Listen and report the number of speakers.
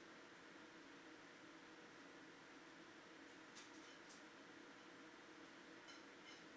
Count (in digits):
0